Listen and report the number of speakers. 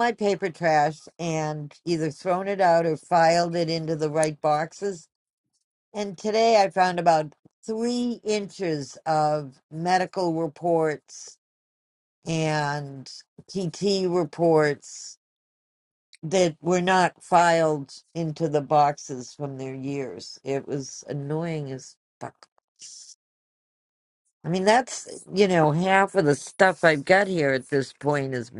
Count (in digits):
1